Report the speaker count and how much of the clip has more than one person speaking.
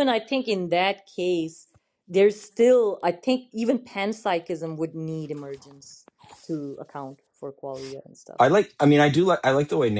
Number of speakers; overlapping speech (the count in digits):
2, no overlap